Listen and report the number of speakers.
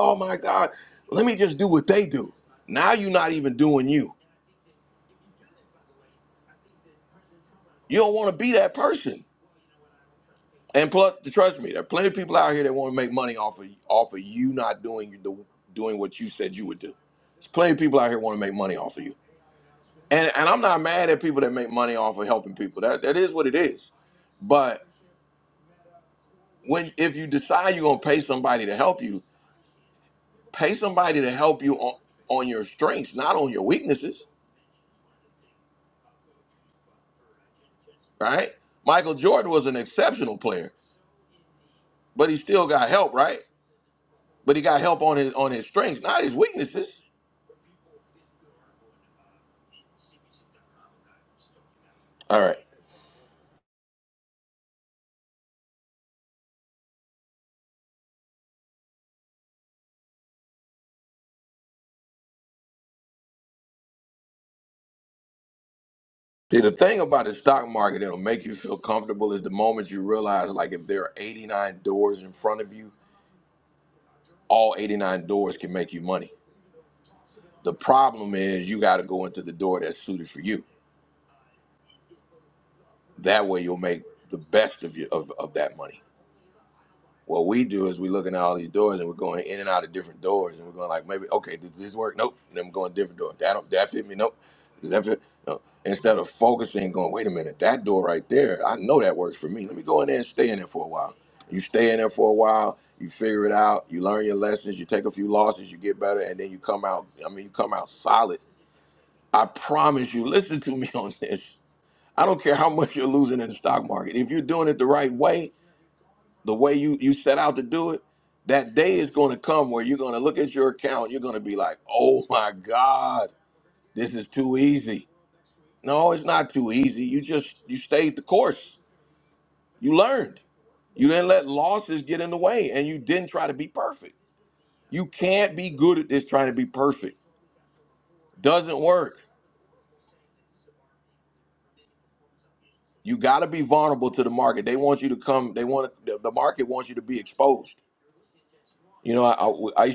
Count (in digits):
1